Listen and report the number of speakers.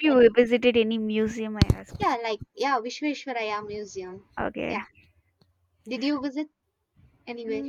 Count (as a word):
two